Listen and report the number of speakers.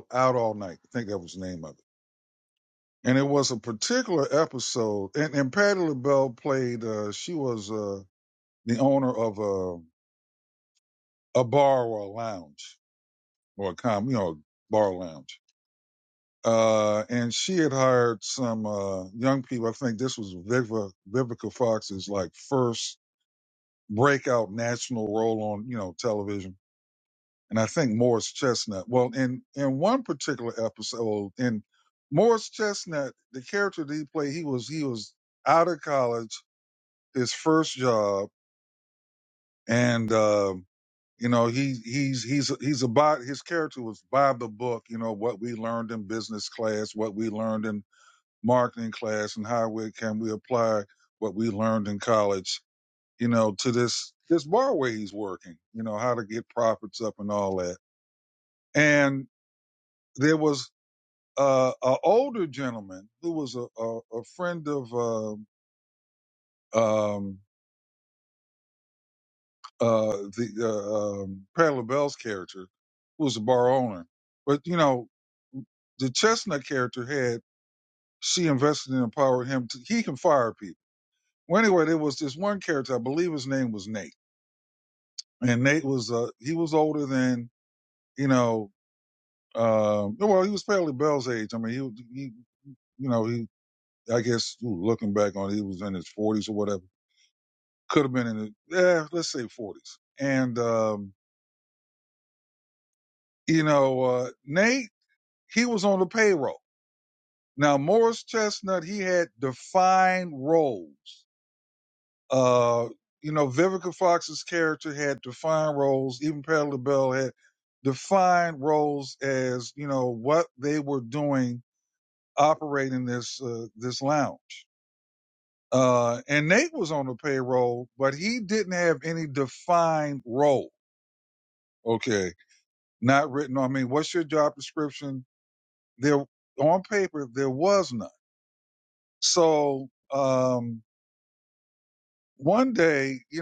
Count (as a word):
one